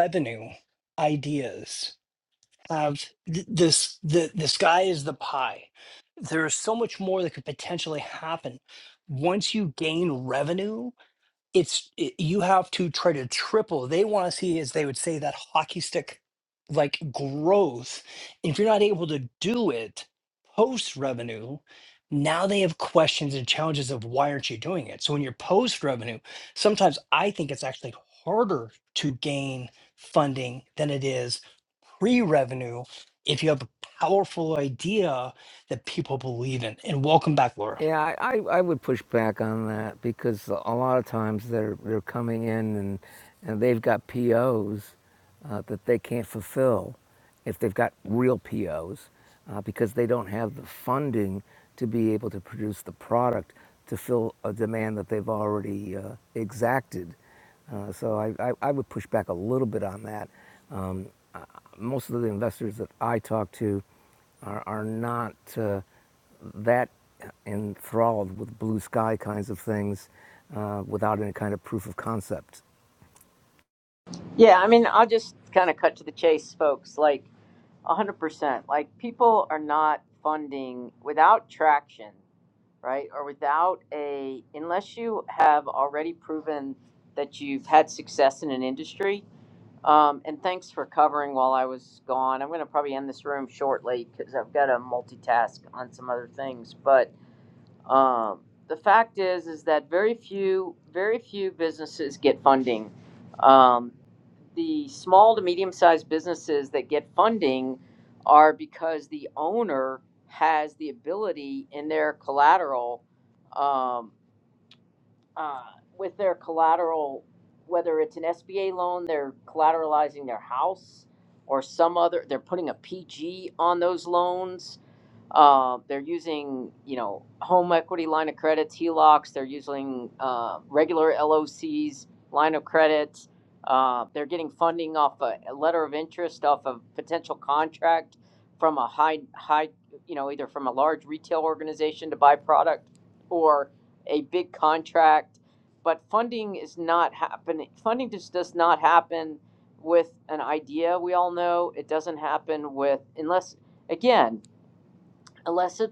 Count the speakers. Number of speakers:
3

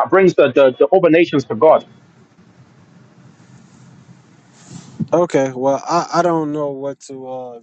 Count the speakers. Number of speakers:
2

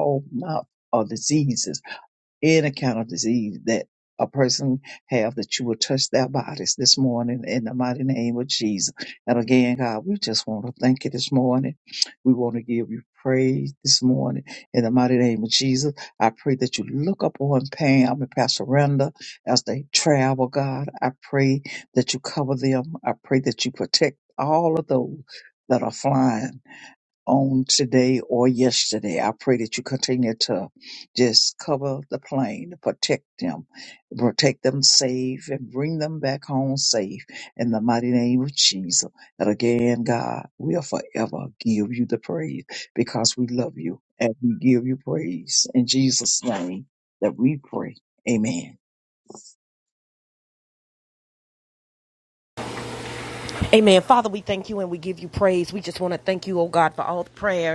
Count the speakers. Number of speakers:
2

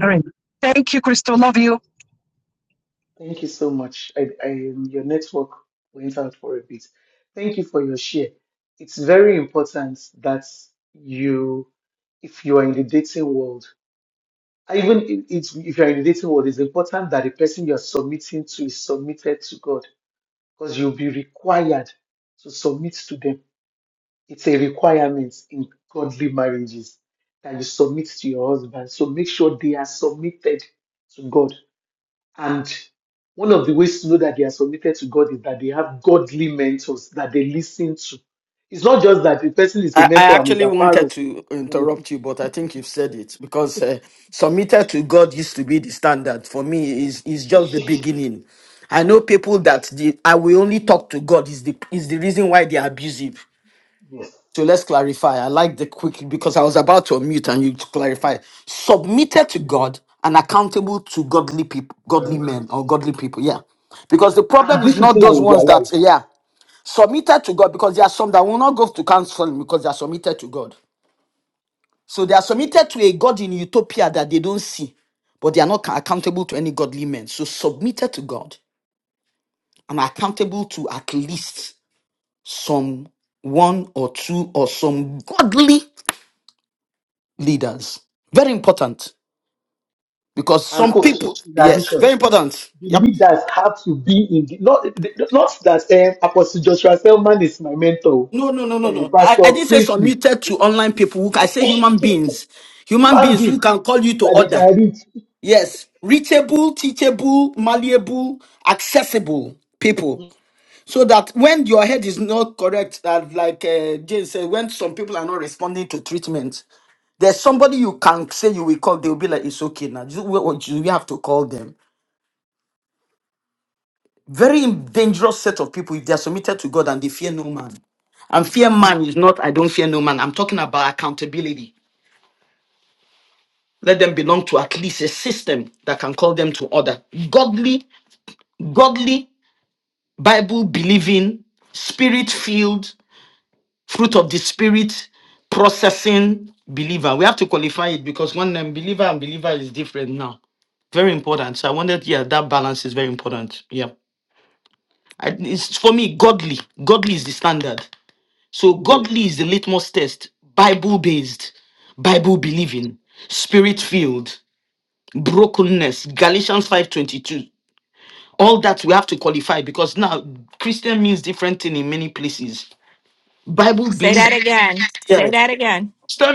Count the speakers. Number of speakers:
4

